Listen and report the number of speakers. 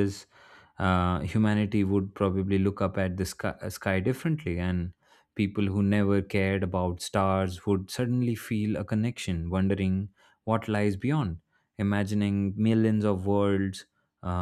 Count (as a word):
one